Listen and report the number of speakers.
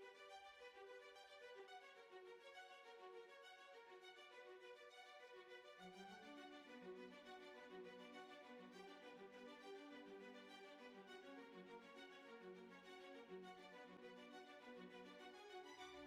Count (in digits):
0